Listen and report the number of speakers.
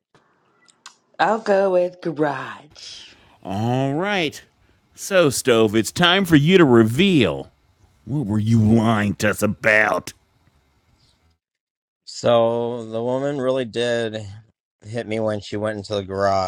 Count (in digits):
3